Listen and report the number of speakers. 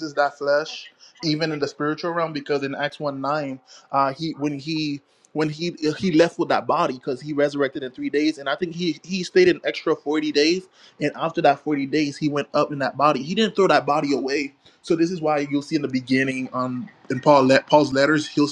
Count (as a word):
one